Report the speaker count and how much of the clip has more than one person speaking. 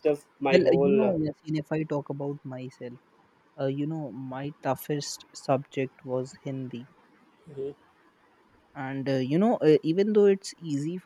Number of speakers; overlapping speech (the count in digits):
2, about 6%